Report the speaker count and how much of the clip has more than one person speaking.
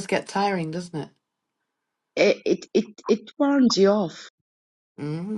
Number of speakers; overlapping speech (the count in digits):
2, no overlap